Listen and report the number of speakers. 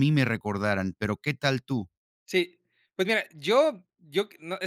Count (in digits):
2